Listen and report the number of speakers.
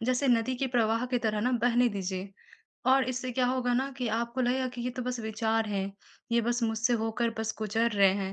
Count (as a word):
one